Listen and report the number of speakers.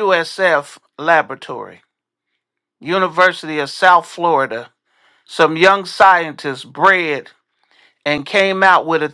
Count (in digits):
1